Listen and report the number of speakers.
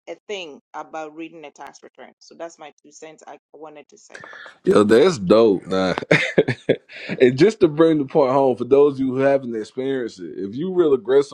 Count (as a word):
two